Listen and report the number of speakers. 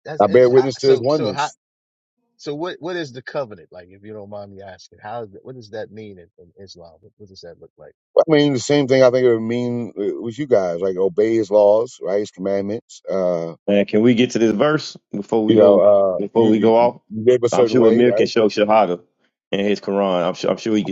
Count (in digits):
3